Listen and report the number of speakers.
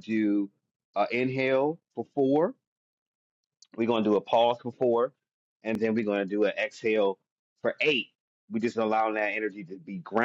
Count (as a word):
one